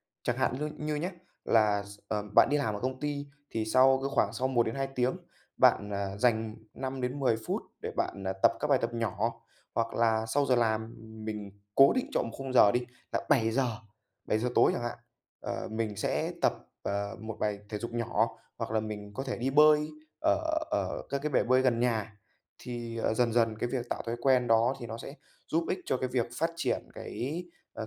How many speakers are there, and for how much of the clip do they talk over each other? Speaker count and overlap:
one, no overlap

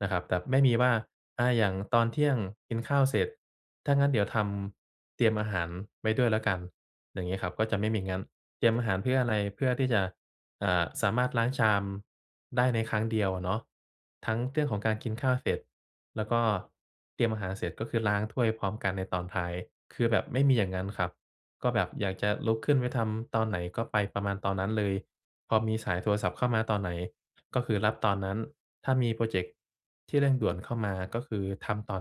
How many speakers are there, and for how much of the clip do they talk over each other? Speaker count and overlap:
one, no overlap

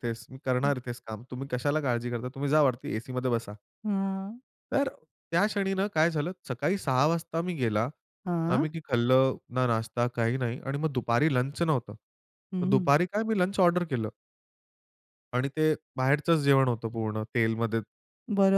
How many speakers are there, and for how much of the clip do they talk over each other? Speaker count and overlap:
two, about 3%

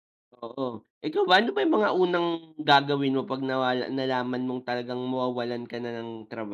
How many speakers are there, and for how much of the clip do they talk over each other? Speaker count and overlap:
one, no overlap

